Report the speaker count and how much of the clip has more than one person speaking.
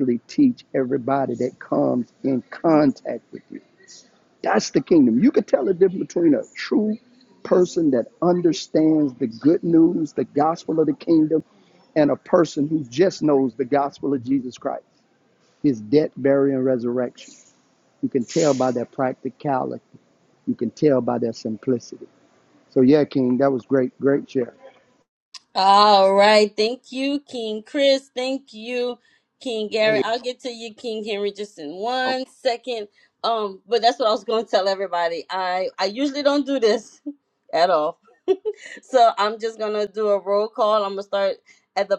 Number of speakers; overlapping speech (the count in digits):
2, no overlap